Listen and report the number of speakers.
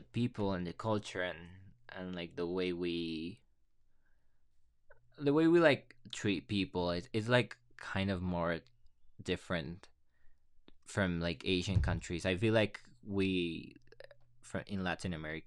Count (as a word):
one